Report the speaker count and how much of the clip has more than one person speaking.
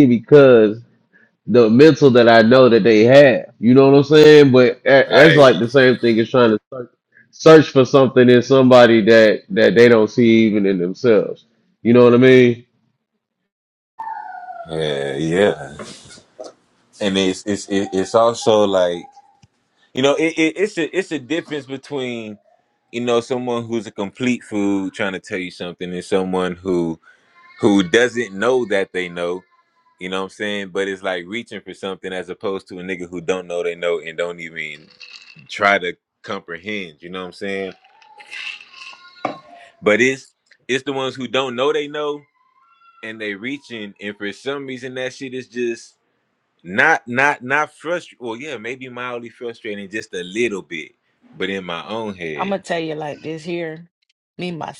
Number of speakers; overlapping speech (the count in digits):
3, about 1%